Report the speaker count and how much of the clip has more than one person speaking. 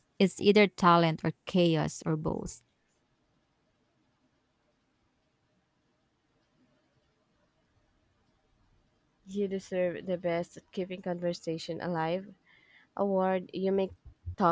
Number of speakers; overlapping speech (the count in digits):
2, no overlap